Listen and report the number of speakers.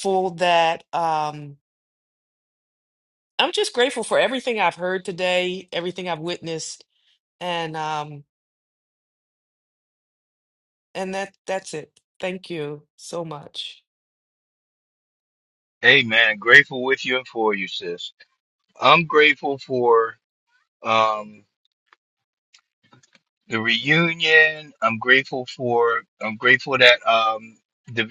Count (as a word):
two